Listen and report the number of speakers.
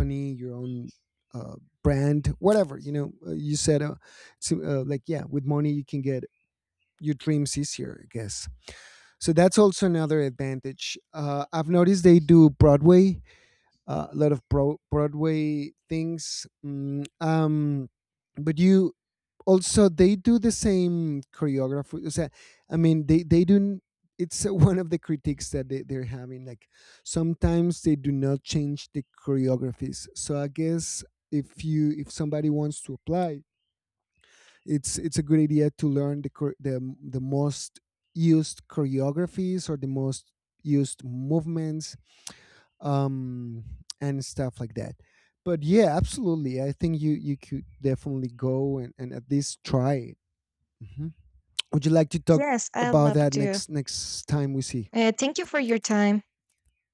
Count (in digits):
2